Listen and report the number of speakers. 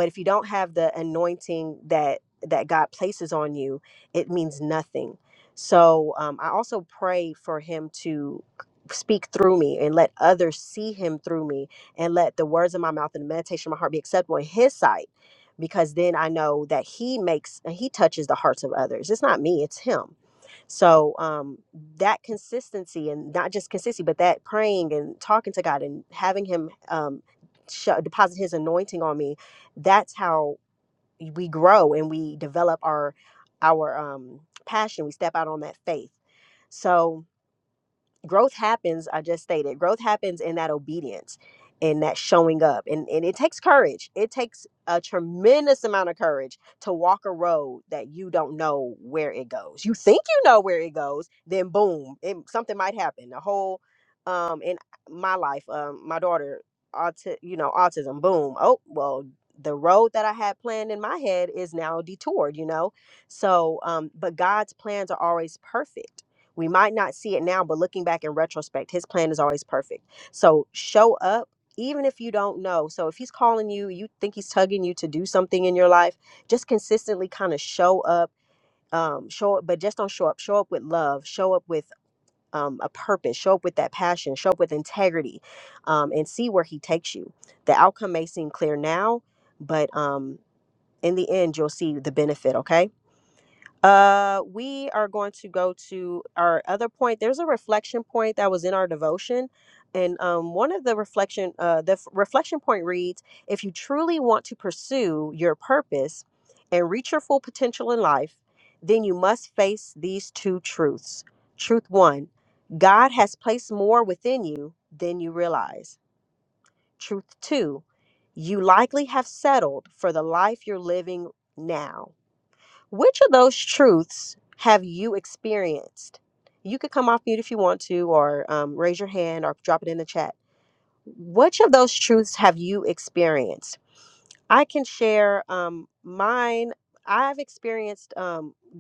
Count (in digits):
1